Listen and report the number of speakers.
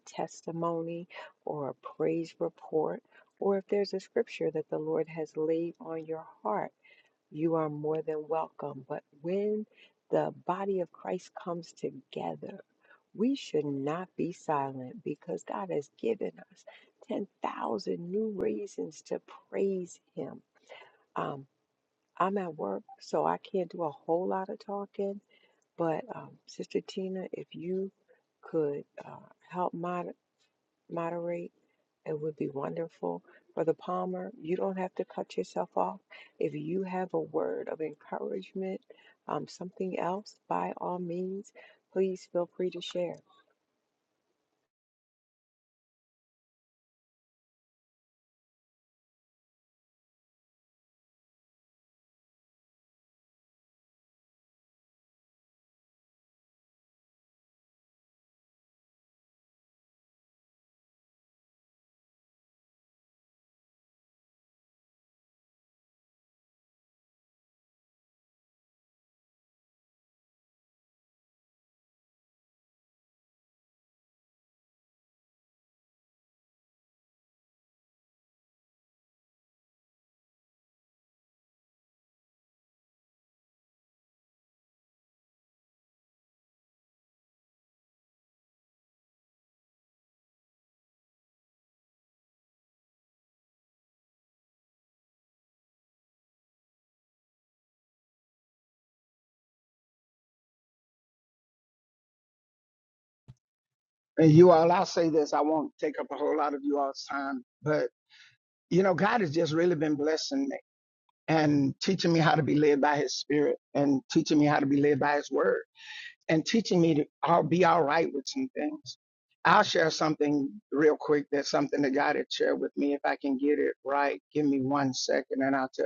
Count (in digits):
2